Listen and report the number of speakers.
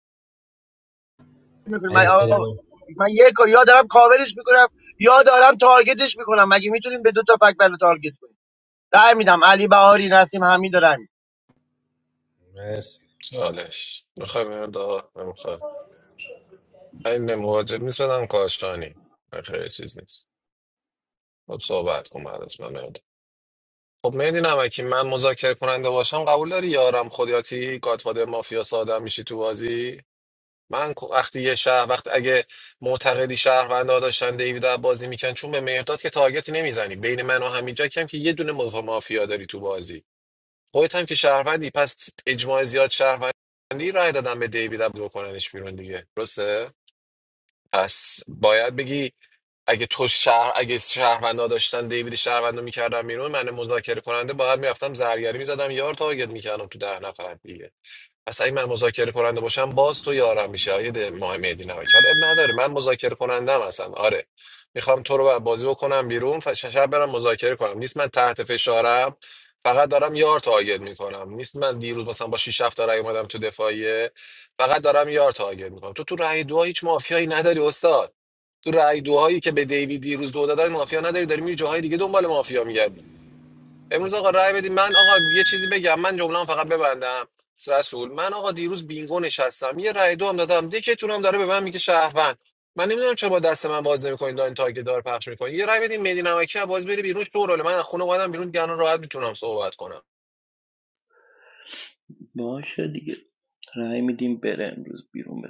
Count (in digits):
4